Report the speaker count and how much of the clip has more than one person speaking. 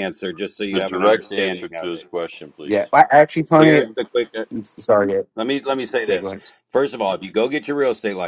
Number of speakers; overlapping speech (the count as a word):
three, about 24%